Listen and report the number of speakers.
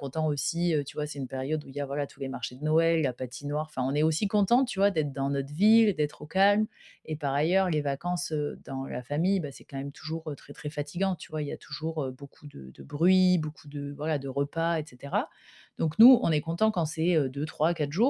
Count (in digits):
1